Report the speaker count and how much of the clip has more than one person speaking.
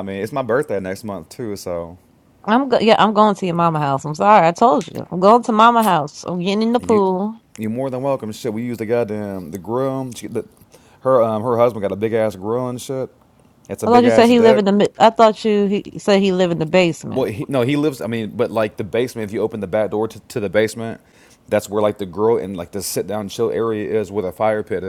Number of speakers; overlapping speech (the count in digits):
2, about 5%